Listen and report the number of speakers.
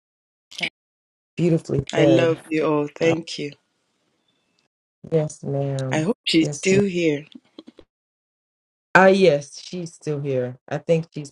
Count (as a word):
two